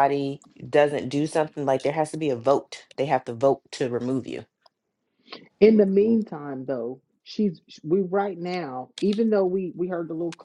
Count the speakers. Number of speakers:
2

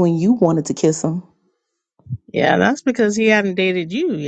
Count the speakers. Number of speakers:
2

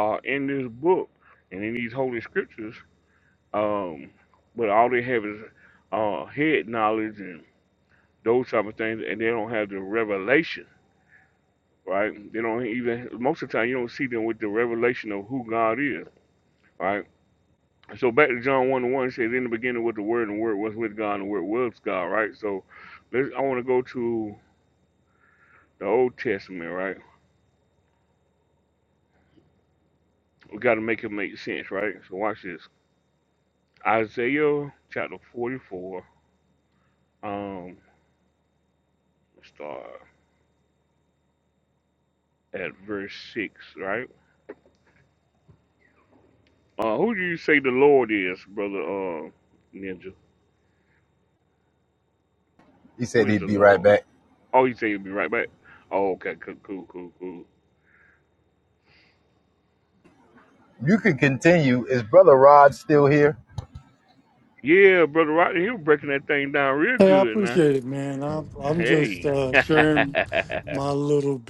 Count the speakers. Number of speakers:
3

